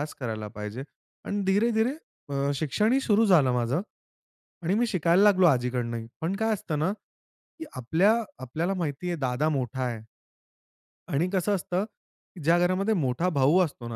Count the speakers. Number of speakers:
one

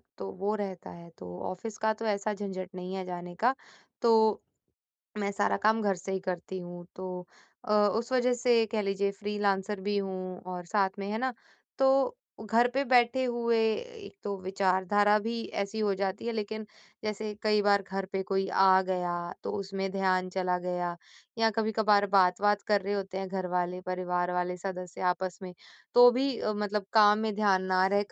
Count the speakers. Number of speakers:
one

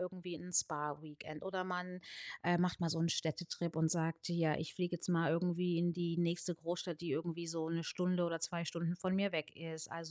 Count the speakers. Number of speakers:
one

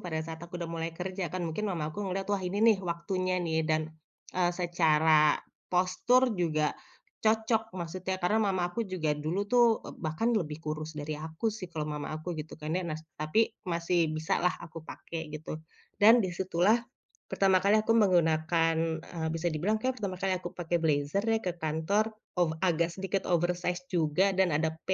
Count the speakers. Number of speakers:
one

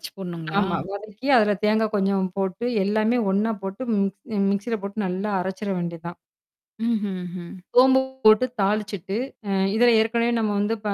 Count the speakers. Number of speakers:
two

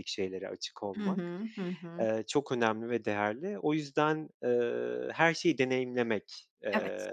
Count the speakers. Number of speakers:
two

